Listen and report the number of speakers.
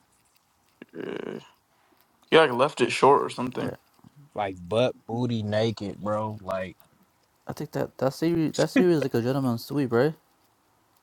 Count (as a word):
three